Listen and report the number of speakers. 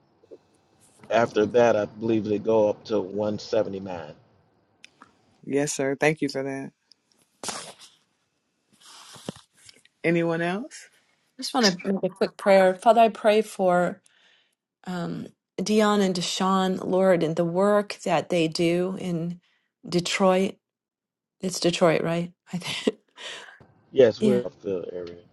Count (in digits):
3